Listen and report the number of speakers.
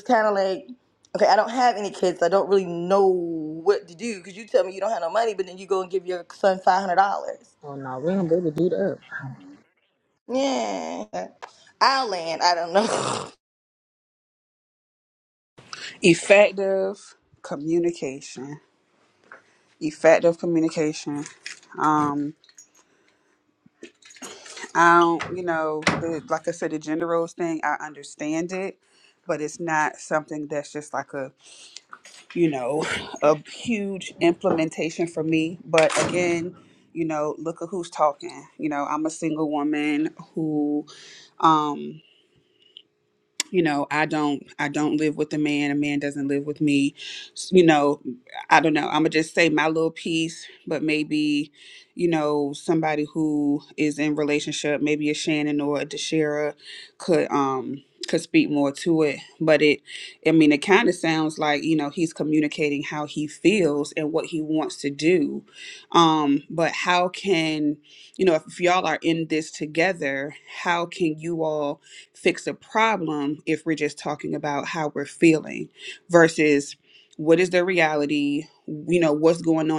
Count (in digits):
3